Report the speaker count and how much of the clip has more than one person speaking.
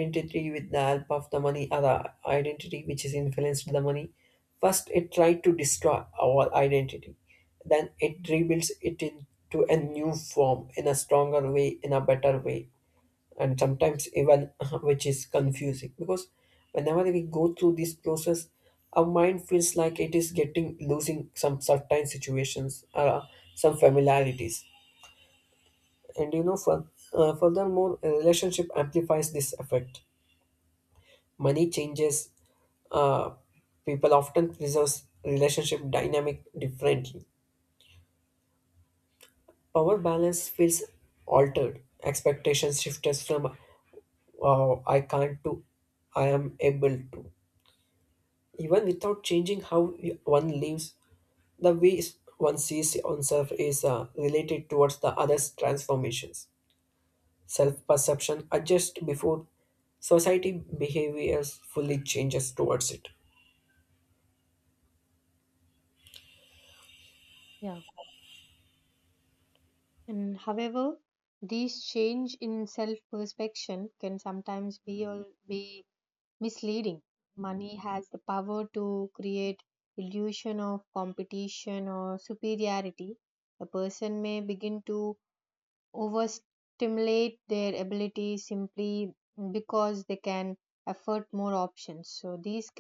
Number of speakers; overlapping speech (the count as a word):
two, no overlap